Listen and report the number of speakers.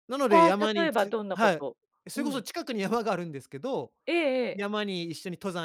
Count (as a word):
two